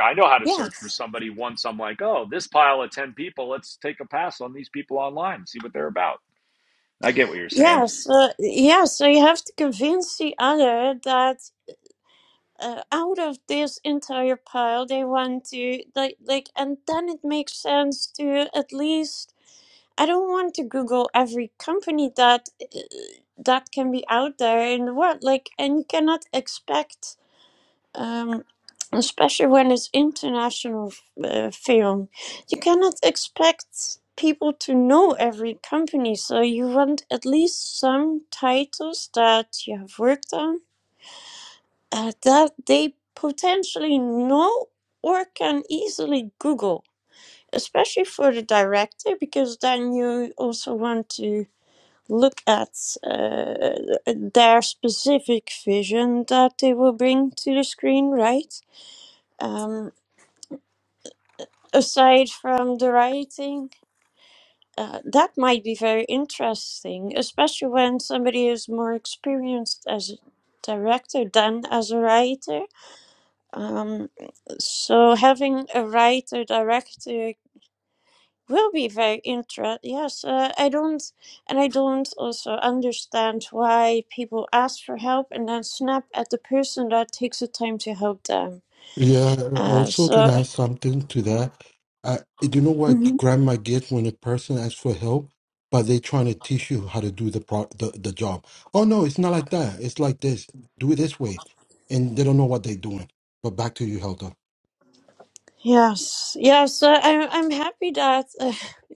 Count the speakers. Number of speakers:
3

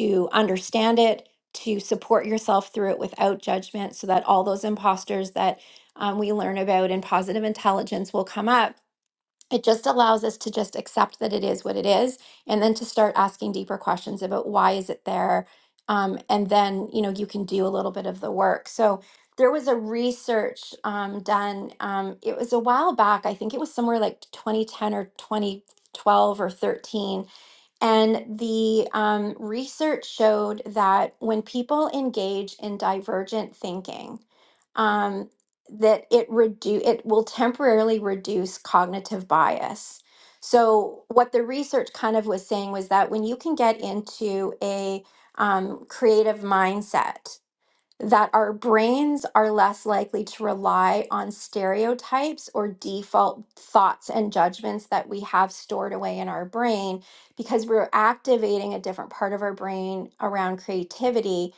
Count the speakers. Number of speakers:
1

